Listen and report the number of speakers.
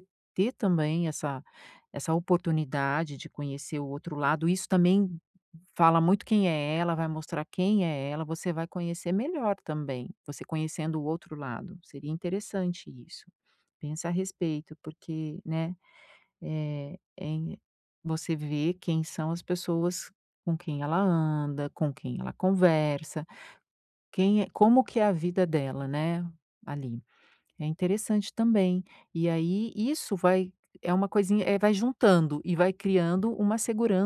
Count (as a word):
one